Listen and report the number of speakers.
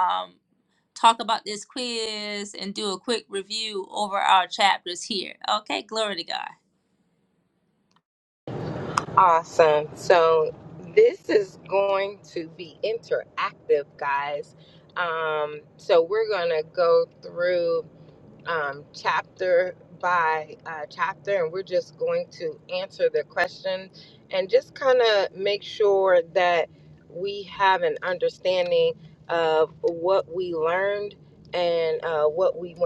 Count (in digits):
2